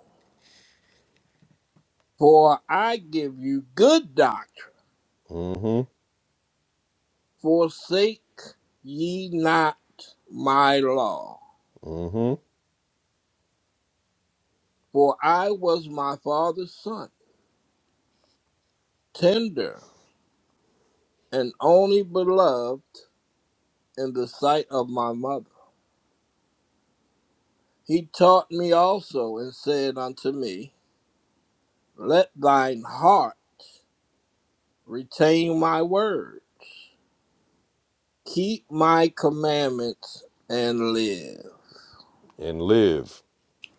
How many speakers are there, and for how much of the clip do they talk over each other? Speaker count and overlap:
two, no overlap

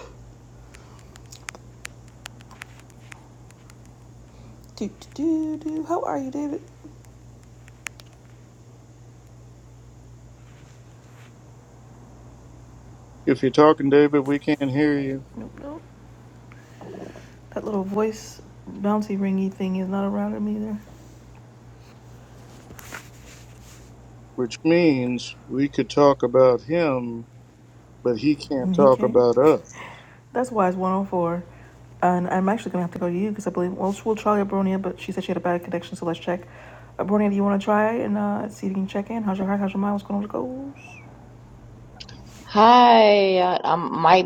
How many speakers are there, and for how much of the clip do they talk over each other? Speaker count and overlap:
three, about 2%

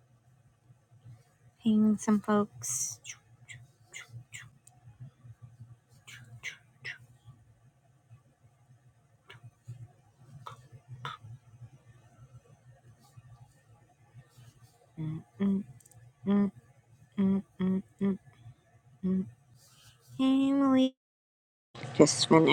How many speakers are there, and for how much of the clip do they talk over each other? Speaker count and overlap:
one, no overlap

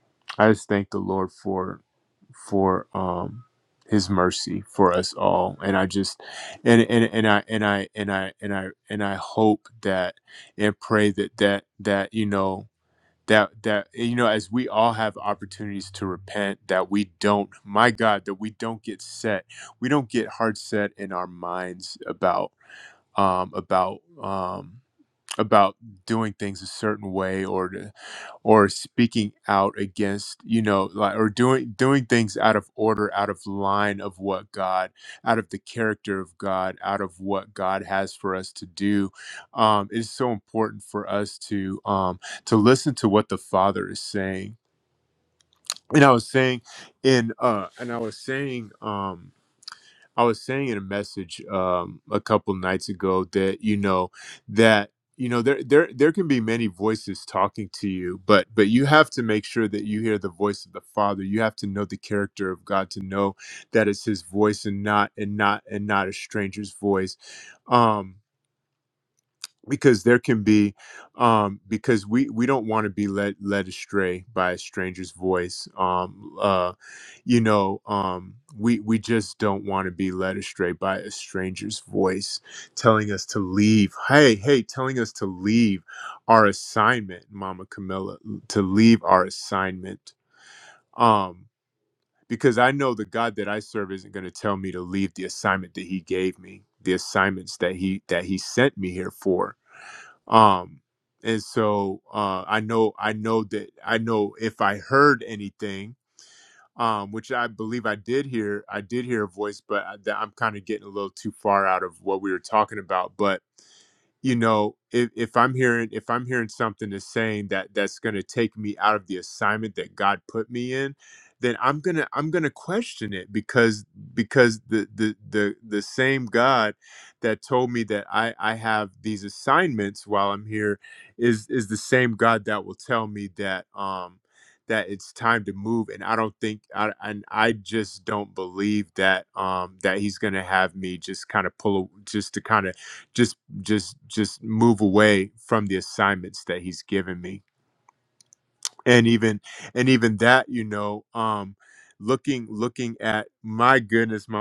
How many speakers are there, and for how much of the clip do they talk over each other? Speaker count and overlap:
one, no overlap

